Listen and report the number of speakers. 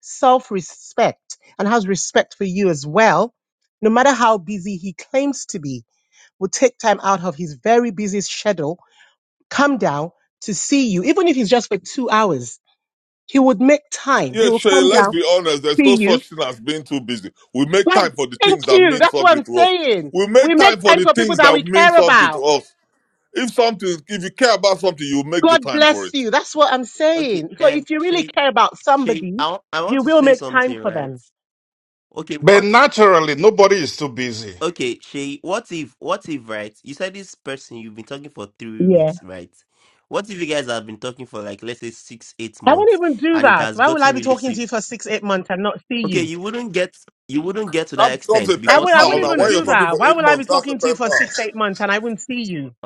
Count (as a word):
four